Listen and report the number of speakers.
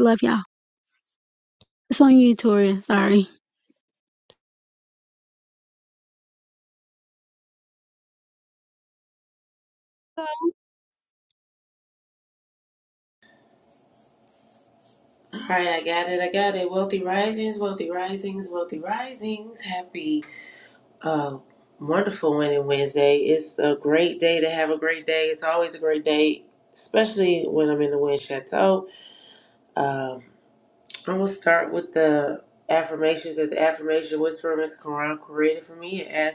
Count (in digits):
2